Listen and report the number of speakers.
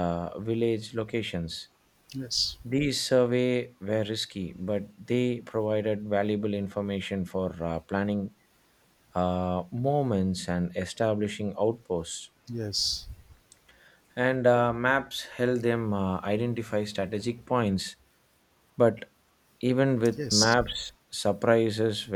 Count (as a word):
two